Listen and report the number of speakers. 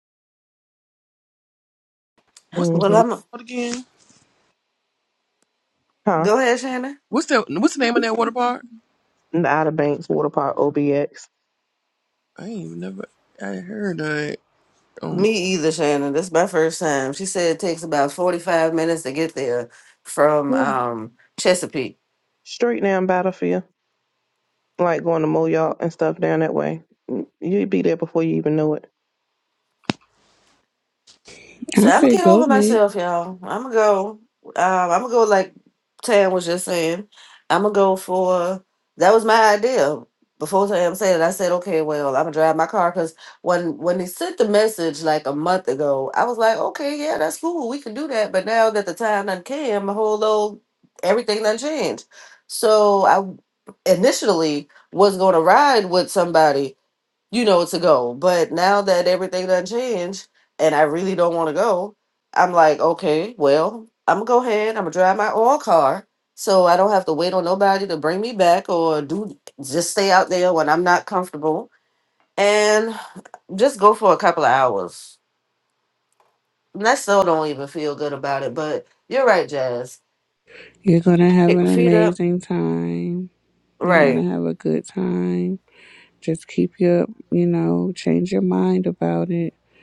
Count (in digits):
4